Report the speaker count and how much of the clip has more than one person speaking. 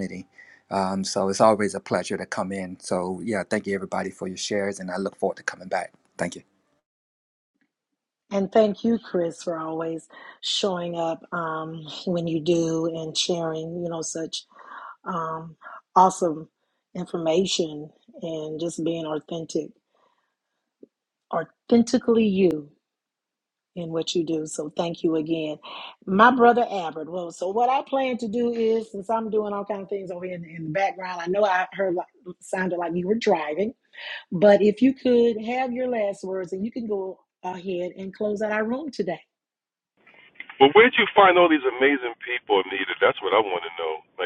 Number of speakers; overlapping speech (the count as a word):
three, no overlap